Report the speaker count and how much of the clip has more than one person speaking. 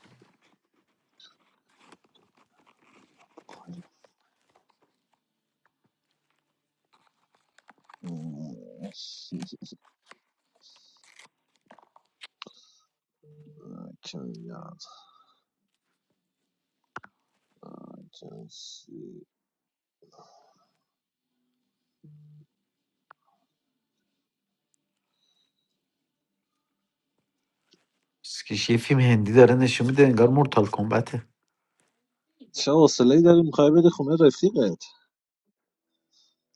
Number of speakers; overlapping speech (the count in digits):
2, no overlap